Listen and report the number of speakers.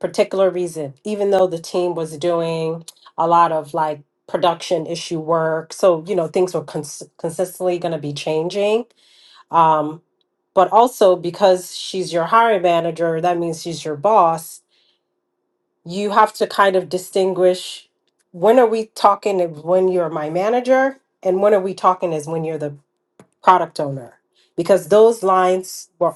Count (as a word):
one